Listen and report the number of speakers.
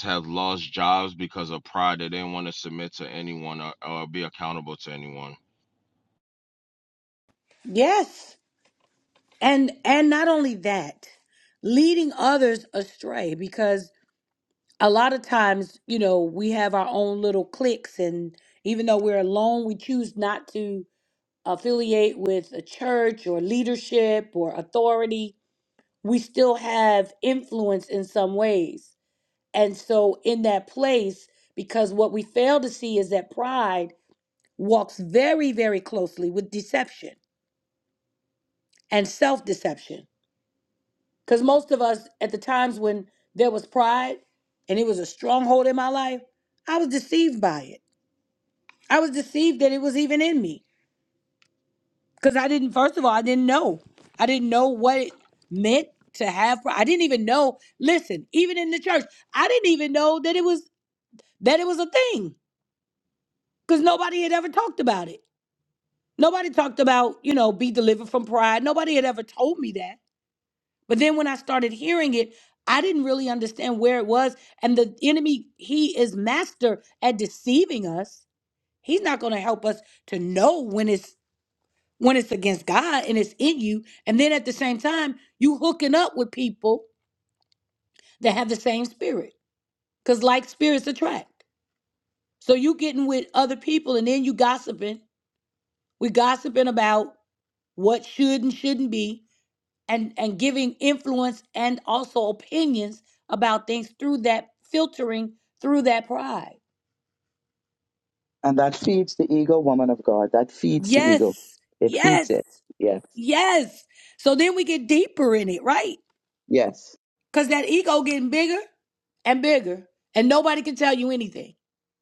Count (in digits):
3